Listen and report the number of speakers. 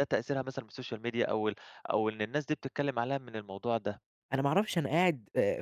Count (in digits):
2